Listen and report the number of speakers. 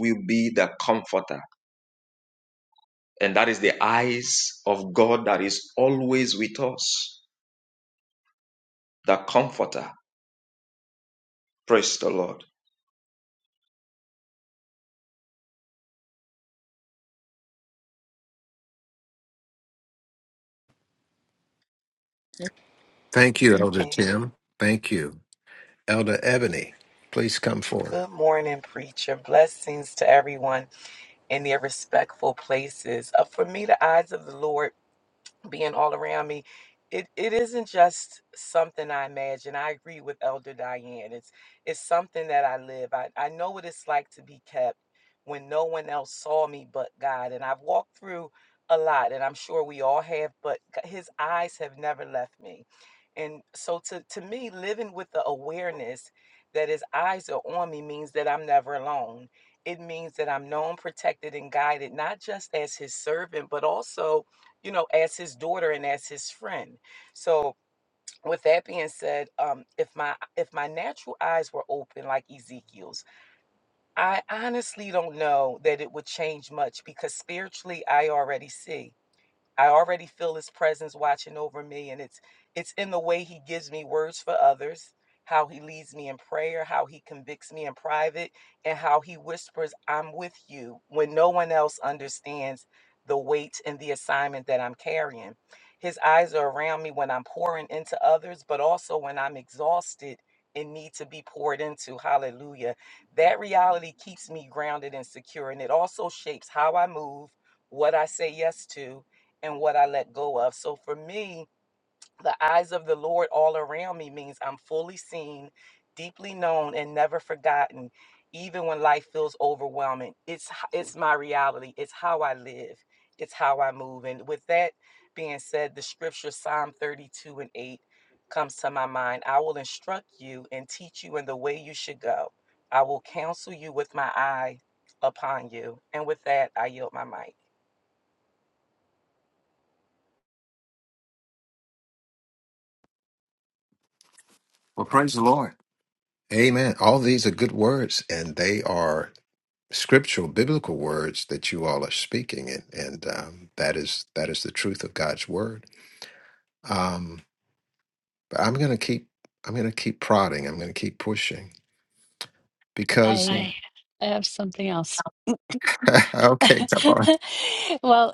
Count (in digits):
4